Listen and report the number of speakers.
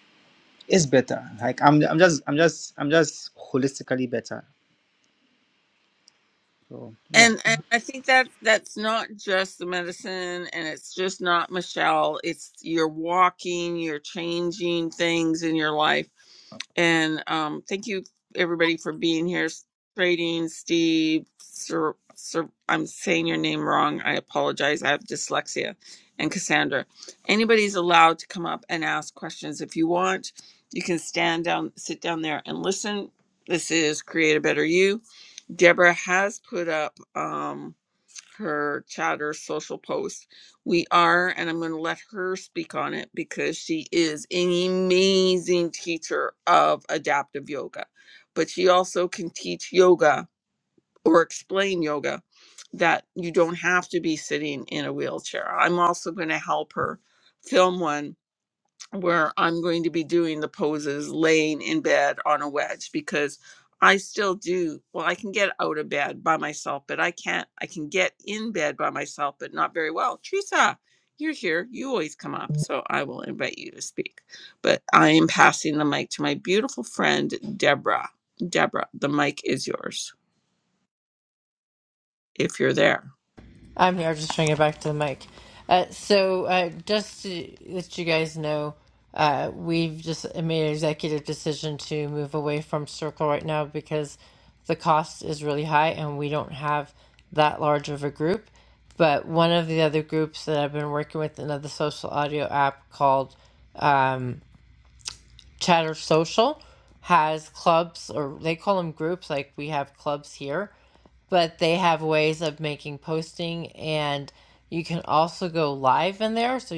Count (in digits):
3